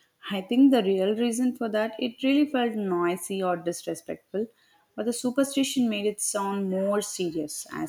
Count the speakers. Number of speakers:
1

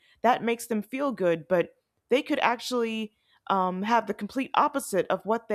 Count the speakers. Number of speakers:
1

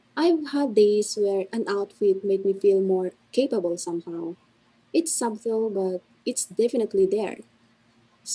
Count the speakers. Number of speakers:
1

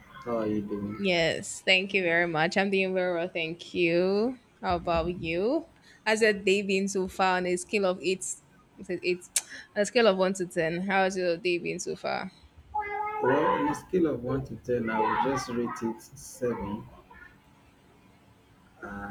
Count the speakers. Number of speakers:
2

